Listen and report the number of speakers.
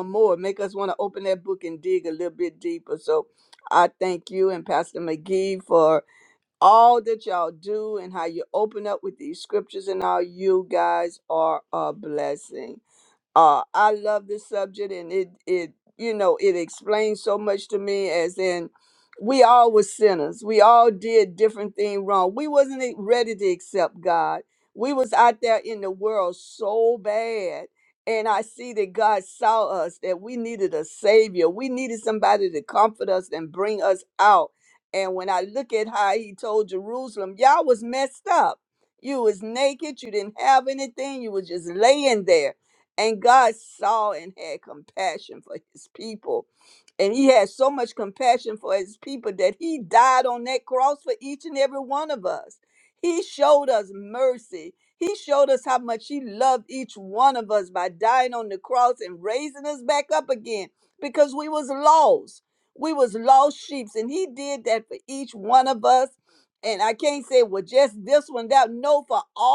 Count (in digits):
1